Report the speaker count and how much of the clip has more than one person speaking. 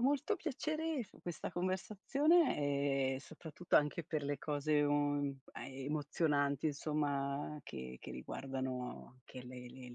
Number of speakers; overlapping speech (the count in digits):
1, no overlap